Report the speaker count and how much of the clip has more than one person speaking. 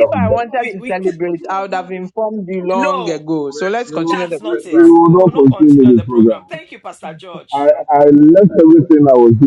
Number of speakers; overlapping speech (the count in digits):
3, about 48%